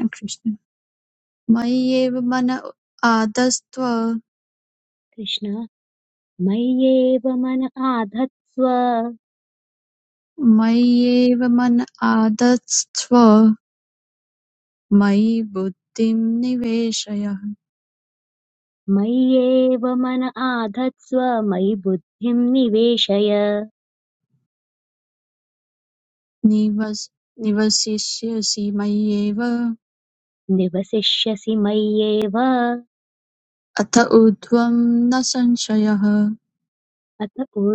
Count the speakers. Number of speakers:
2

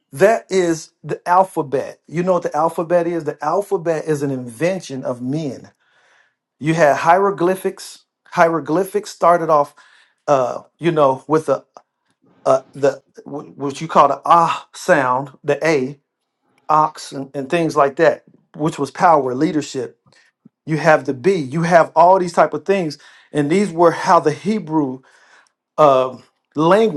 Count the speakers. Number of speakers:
1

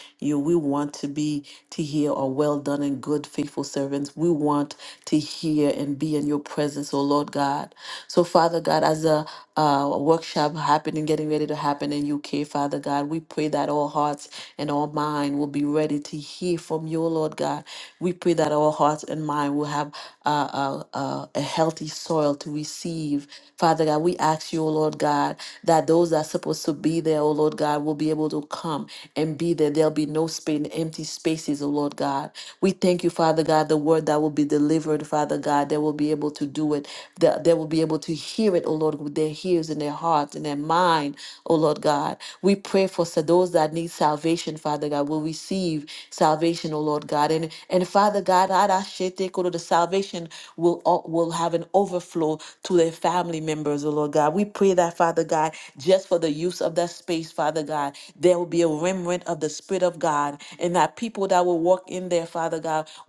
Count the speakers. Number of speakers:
1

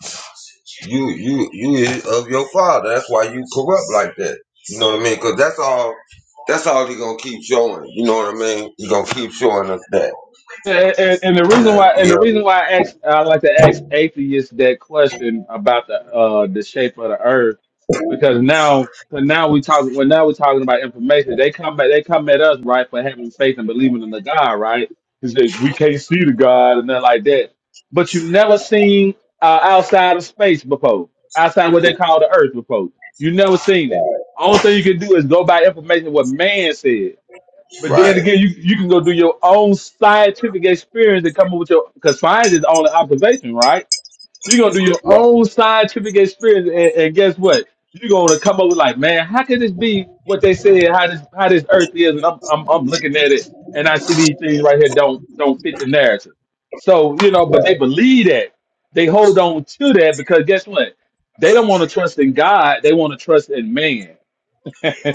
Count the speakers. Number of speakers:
2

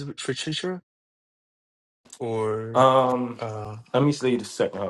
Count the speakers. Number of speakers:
2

